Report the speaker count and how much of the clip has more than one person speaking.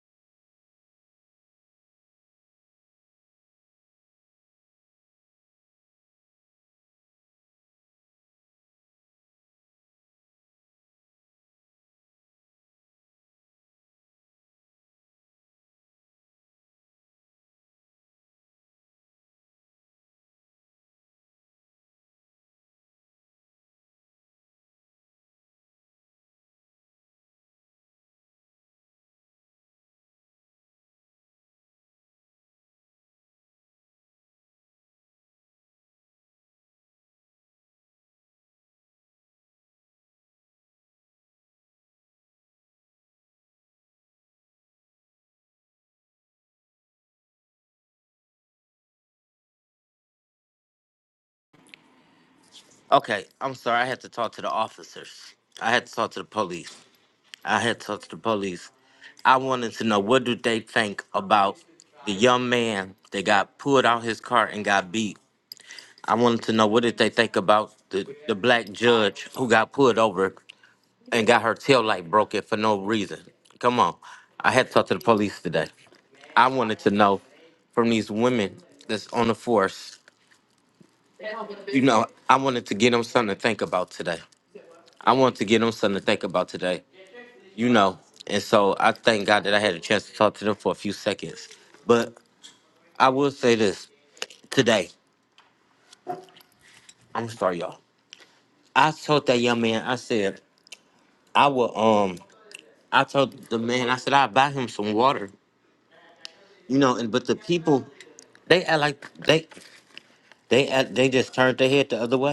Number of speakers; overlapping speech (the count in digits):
1, no overlap